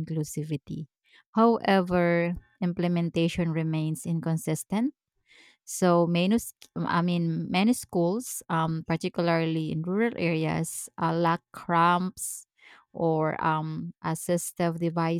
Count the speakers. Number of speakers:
1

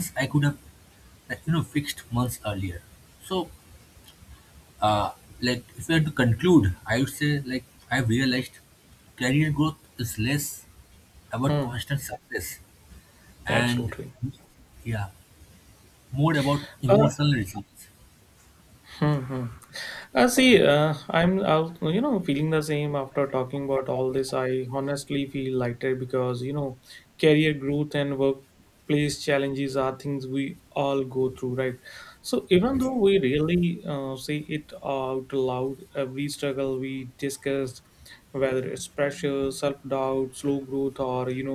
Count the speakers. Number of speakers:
2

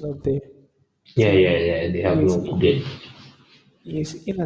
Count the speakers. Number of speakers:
2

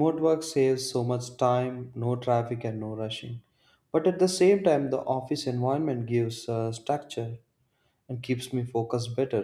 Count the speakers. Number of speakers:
1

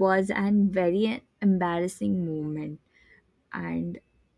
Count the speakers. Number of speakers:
1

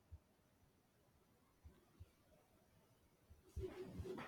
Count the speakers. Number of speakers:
0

